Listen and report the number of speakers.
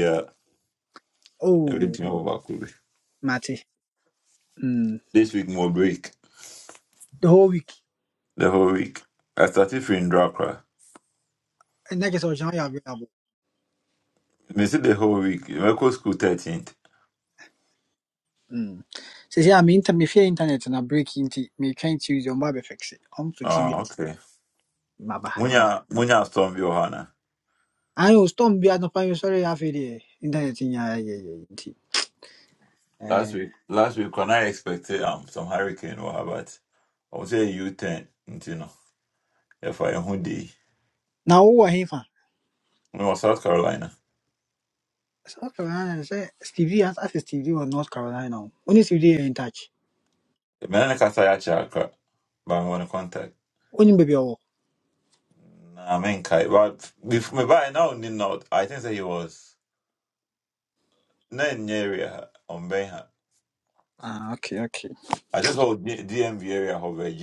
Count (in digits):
2